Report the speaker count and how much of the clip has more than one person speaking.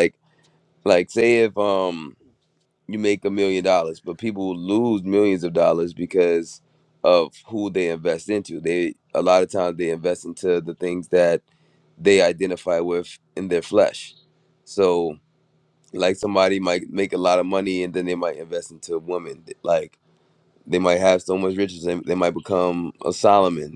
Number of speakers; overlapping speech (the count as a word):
one, no overlap